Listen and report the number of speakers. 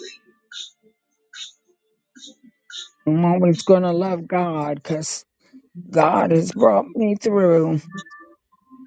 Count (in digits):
1